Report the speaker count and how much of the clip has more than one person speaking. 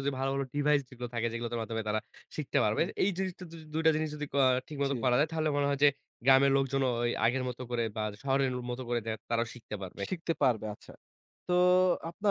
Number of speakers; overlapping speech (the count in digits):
2, about 3%